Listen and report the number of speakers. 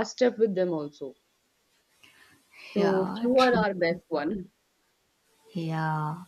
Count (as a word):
two